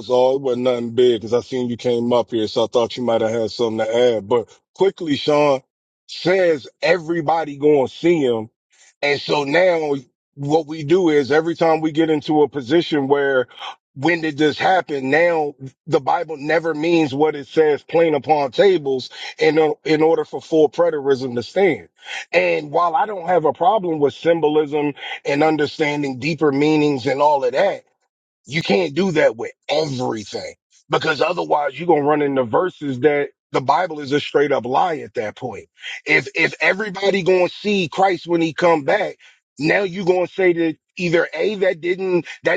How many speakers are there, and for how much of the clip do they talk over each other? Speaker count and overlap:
1, no overlap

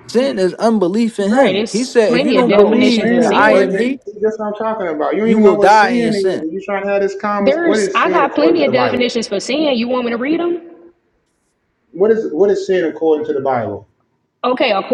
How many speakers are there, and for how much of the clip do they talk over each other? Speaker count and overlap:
3, about 38%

